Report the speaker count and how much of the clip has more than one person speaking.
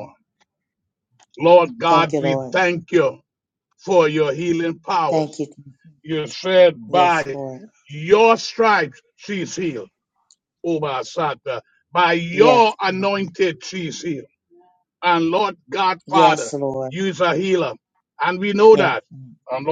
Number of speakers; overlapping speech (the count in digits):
2, about 11%